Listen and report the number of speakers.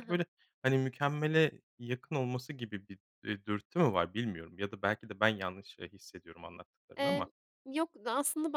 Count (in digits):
2